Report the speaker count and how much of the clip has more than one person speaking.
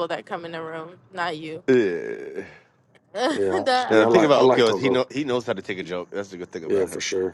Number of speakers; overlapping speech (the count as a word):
three, about 22%